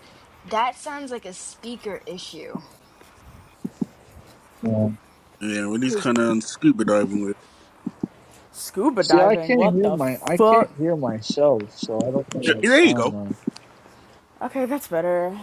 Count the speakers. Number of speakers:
4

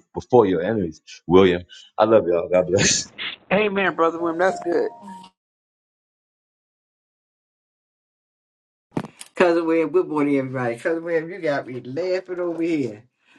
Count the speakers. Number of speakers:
3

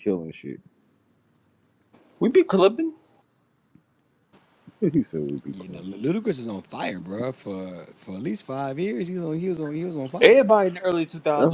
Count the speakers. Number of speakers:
3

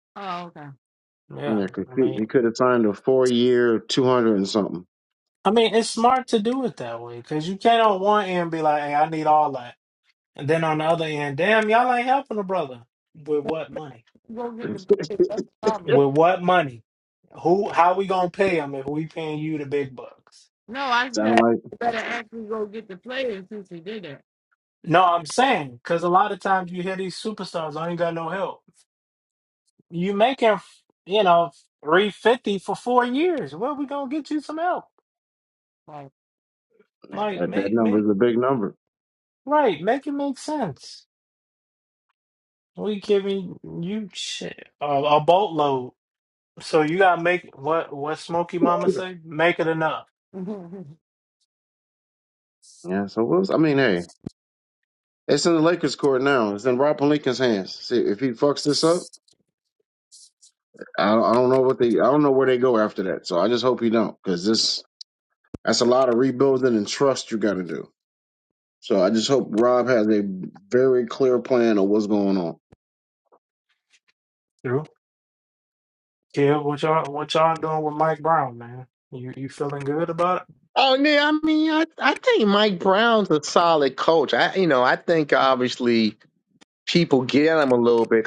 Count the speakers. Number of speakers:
4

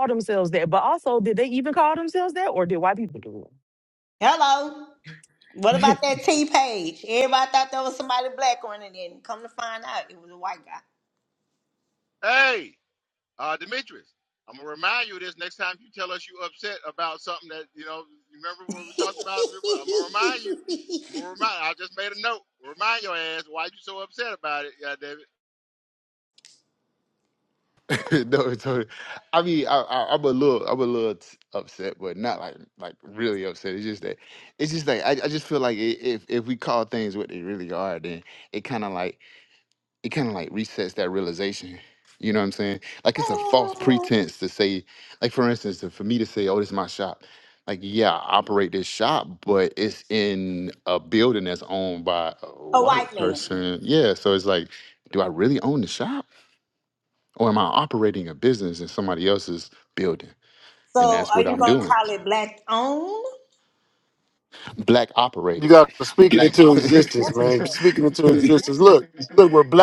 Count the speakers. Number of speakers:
5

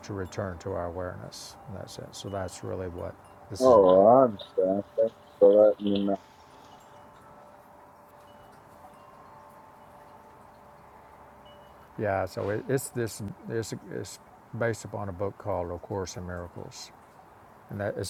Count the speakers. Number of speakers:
2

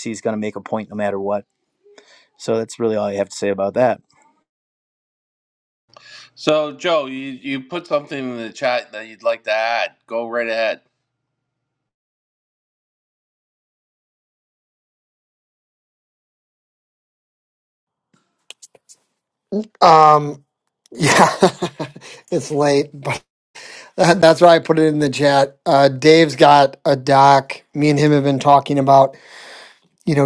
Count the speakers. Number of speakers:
3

